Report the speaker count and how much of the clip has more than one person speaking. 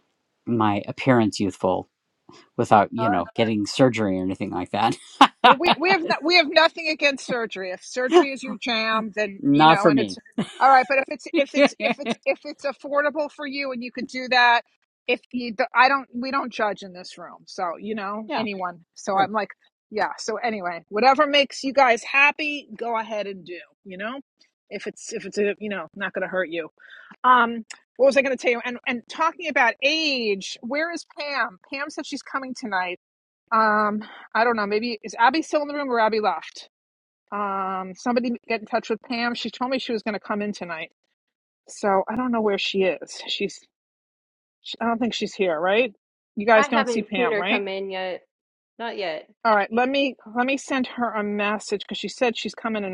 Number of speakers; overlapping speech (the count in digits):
3, about 5%